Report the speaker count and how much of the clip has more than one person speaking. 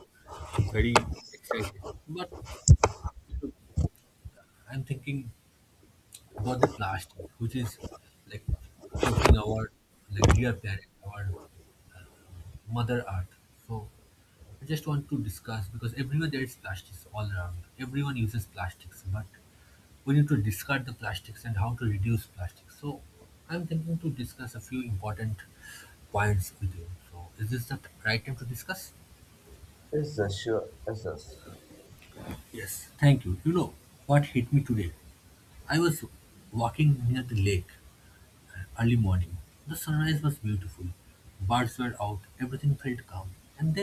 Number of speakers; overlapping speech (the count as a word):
two, no overlap